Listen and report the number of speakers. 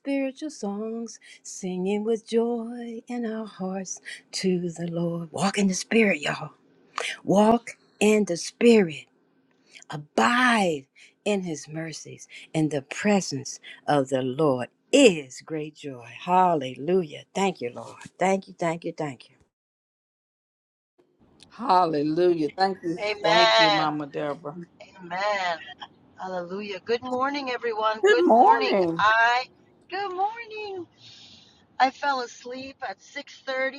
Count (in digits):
3